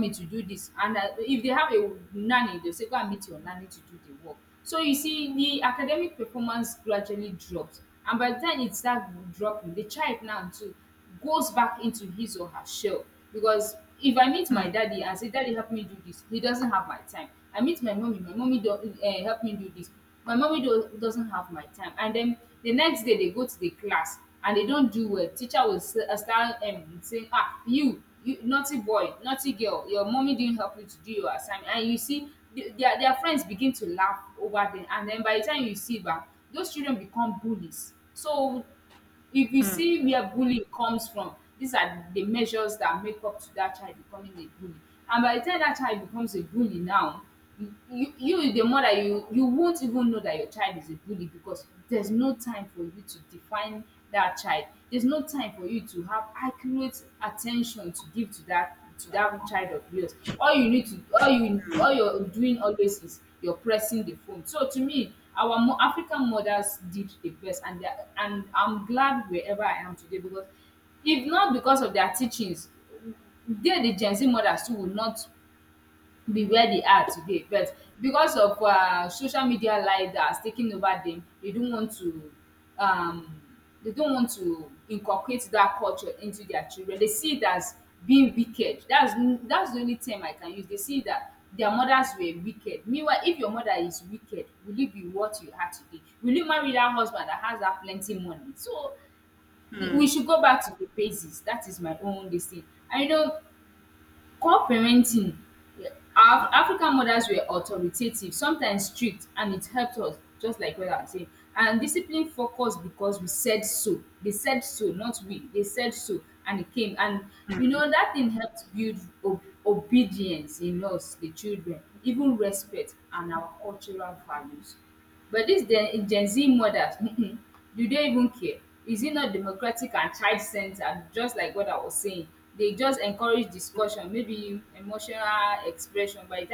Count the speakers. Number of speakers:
1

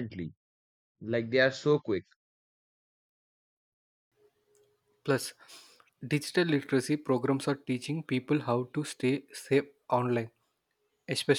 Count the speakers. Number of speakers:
2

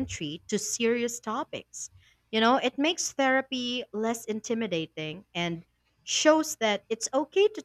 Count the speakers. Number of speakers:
1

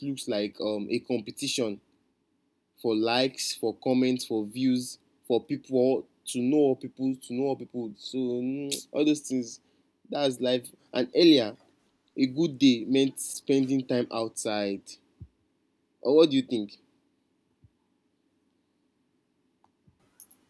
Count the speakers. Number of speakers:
1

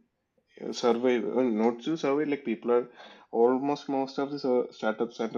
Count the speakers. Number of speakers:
1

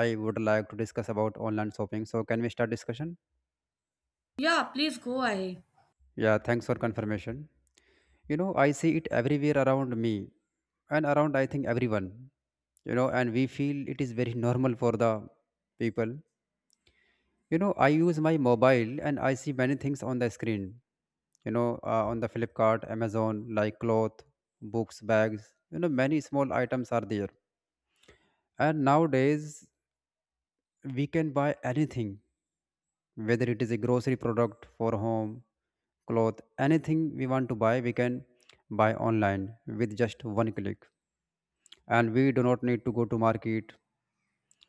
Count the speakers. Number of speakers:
2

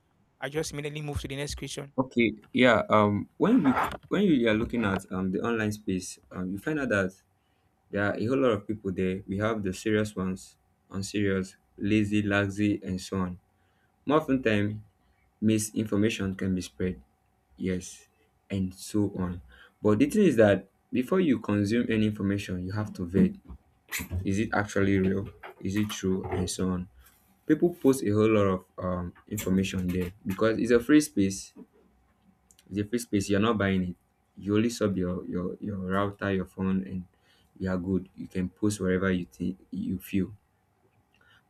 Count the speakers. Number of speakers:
2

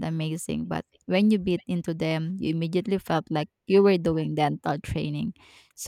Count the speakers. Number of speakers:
1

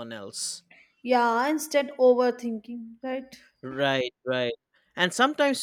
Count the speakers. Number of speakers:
2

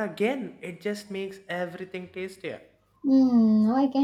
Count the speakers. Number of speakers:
2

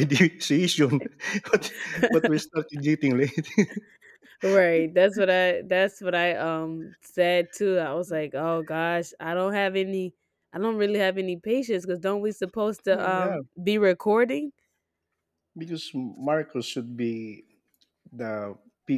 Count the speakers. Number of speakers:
2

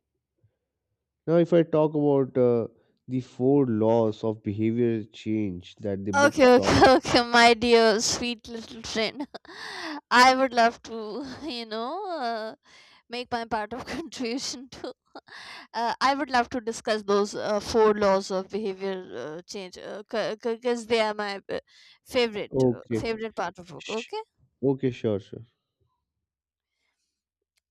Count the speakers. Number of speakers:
2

